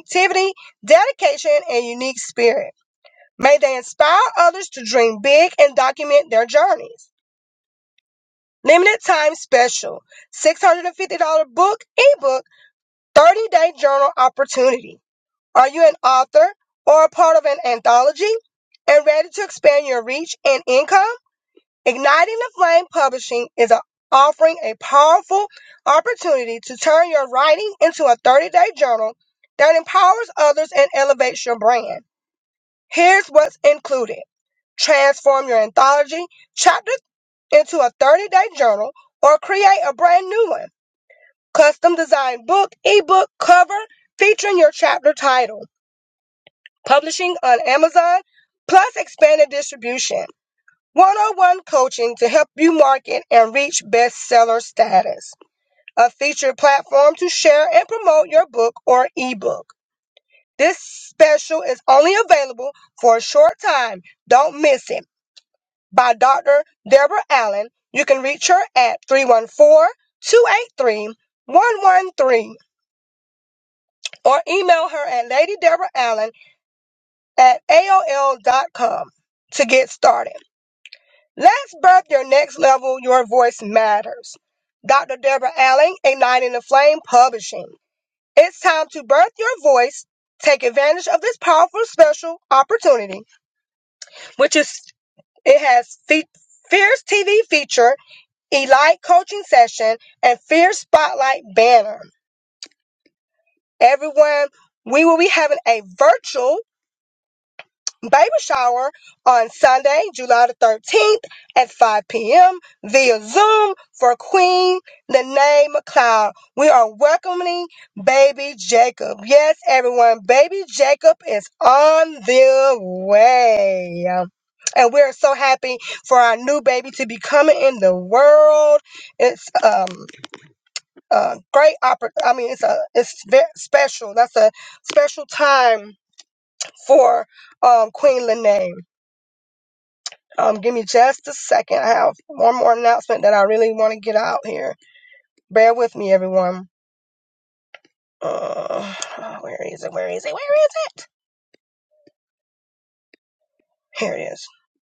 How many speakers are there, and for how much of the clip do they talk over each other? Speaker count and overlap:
one, no overlap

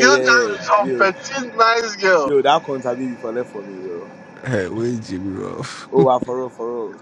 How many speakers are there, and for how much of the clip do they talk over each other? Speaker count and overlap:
three, about 18%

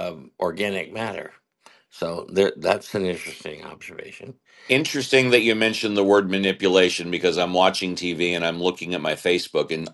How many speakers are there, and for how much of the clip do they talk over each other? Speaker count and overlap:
two, no overlap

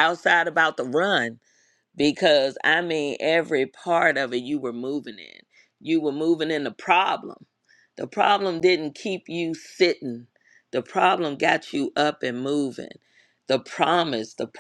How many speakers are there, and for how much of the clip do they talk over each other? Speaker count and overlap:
one, no overlap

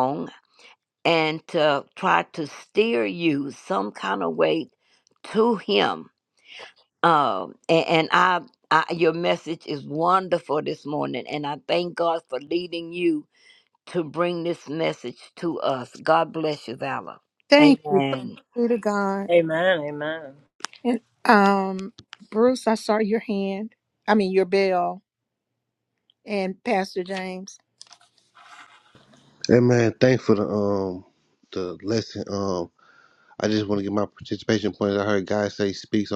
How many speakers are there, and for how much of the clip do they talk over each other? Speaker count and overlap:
four, about 2%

